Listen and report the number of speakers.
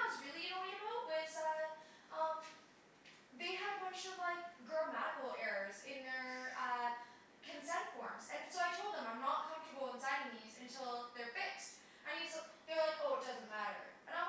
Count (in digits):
1